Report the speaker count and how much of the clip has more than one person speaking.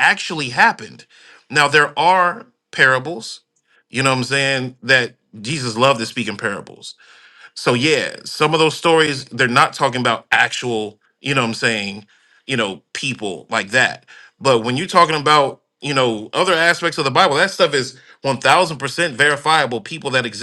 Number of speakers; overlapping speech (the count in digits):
1, no overlap